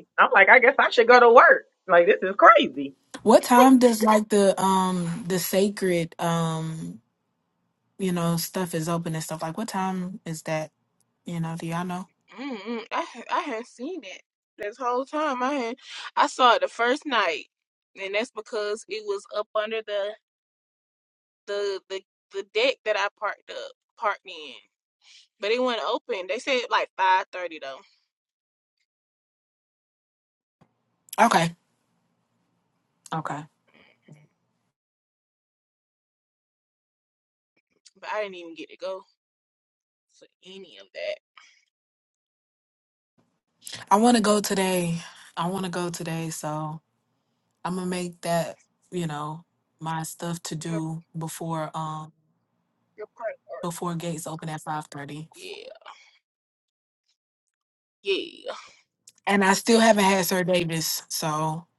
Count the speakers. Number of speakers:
3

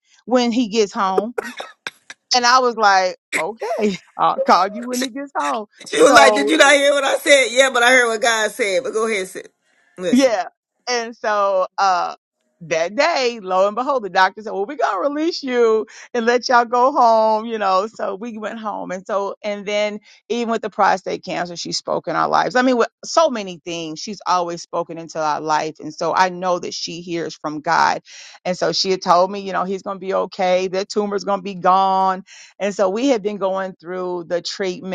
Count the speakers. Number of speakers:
2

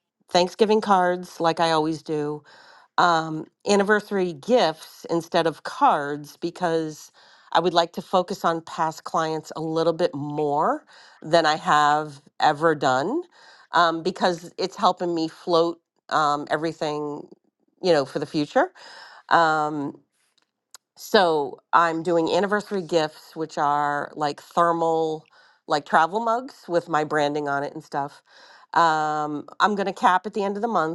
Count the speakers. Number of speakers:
1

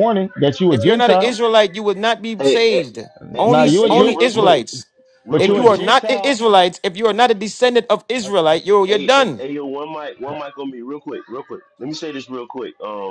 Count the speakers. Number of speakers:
3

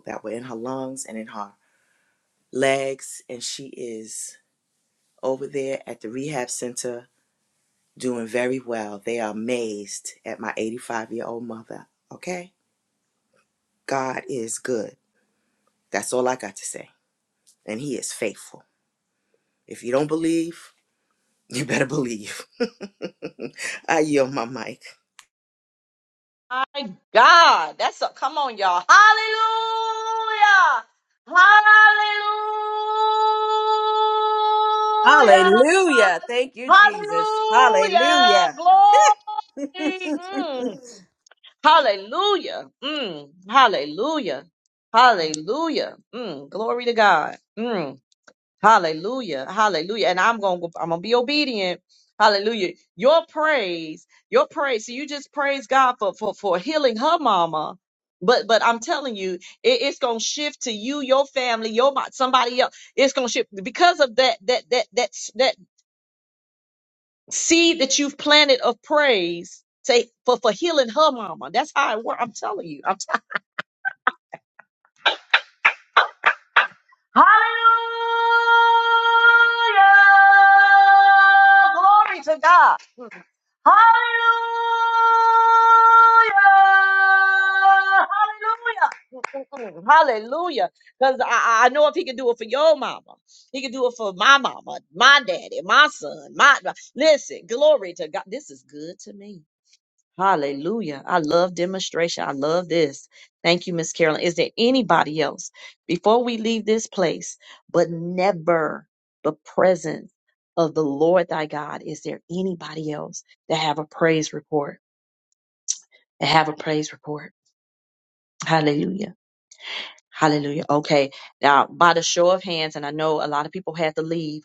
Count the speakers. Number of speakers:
3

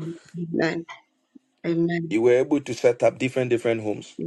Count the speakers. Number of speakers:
2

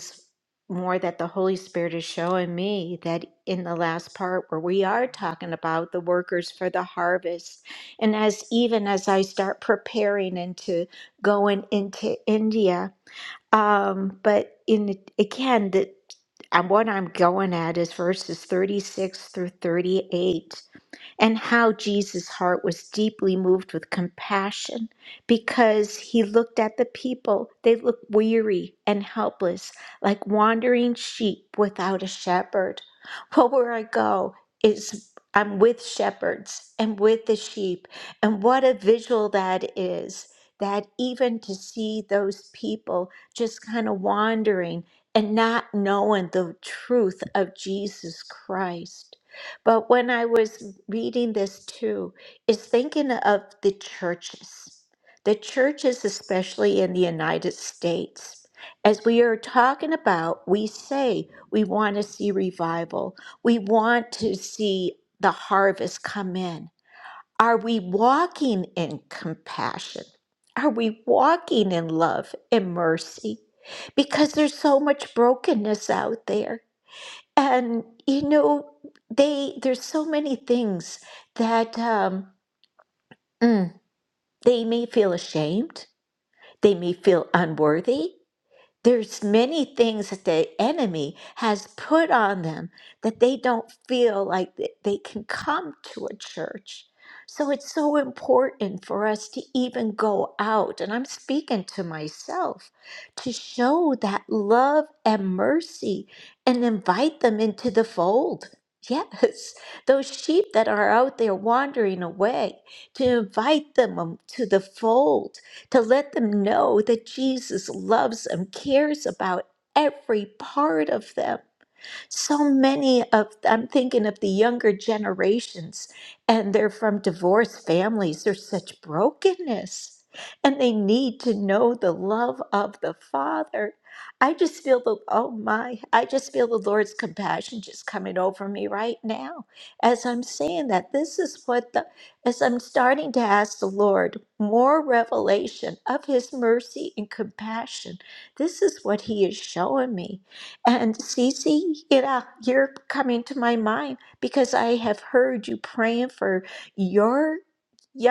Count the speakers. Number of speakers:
1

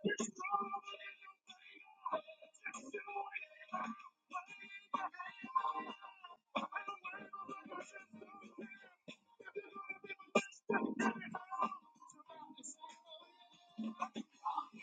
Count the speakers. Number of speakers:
0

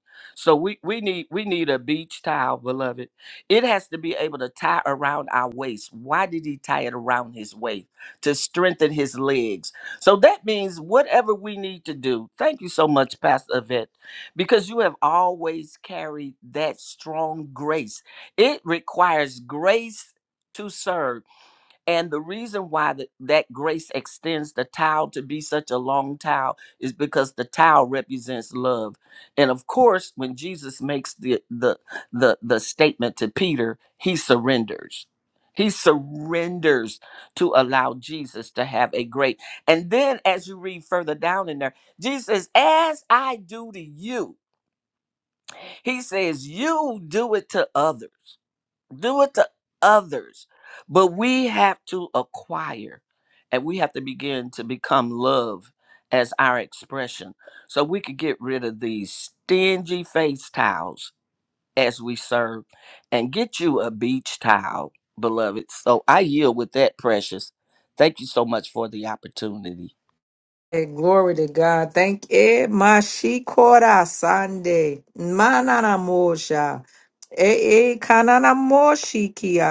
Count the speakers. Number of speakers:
2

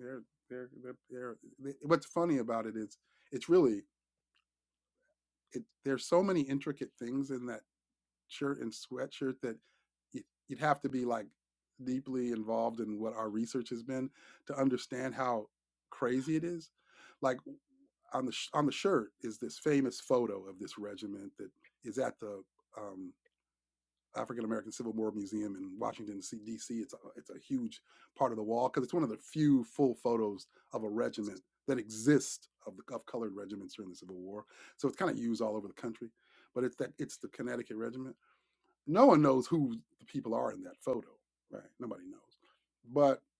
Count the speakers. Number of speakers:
1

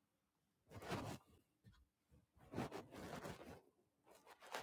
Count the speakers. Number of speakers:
0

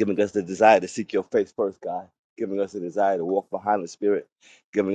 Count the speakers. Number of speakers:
1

